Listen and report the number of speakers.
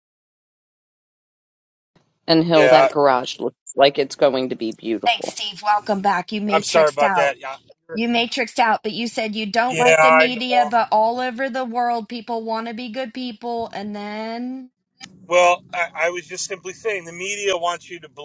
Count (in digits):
3